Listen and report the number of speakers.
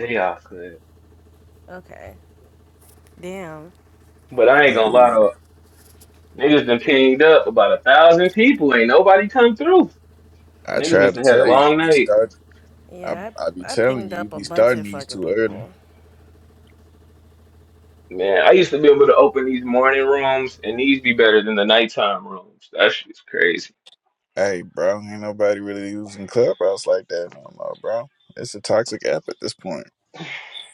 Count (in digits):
3